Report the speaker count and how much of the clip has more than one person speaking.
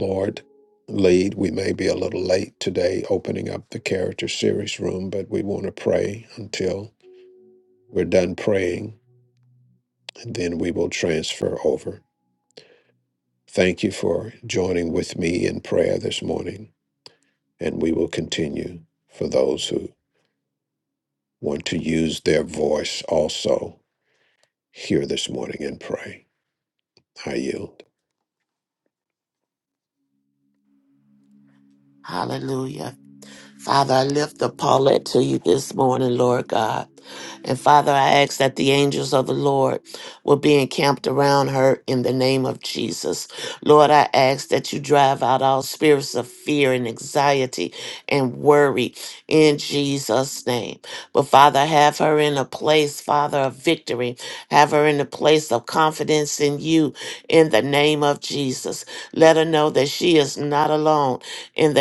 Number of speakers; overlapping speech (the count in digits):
2, no overlap